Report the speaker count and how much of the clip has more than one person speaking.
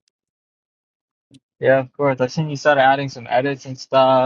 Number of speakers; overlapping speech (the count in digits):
1, no overlap